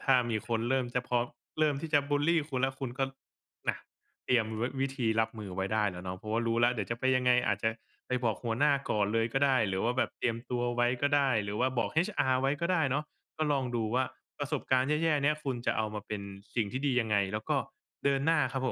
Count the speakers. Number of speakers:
one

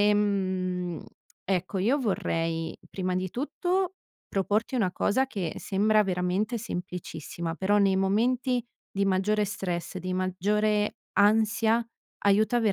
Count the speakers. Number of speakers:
one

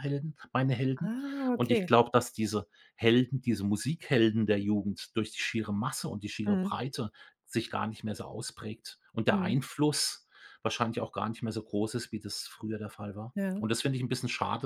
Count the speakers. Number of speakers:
two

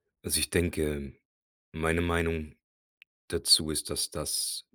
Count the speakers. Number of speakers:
one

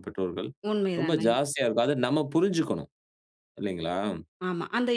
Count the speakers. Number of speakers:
two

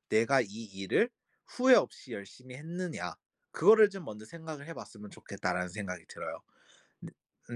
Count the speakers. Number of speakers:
one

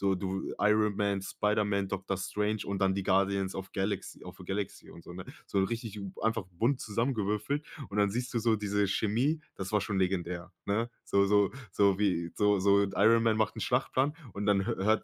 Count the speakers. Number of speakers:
one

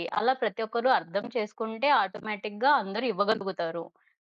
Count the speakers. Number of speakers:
one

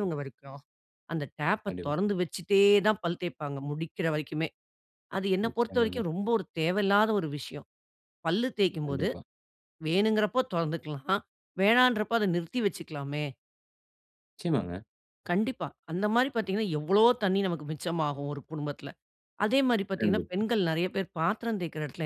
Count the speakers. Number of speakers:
two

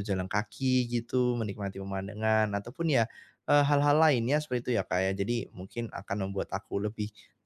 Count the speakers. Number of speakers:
one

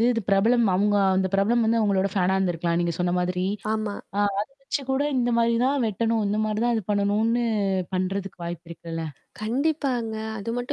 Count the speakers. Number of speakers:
two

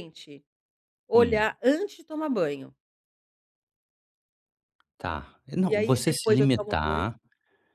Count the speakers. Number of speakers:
two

